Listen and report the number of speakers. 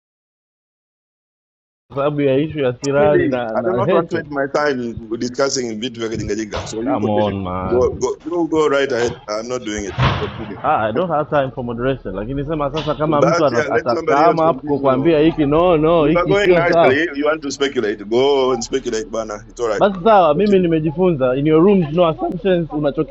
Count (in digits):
2